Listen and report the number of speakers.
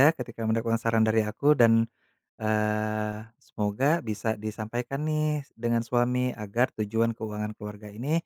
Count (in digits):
1